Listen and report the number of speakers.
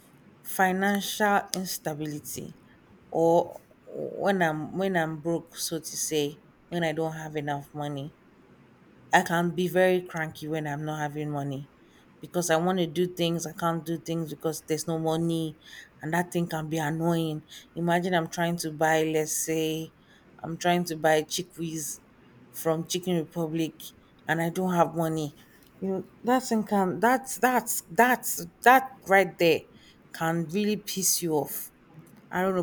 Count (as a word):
one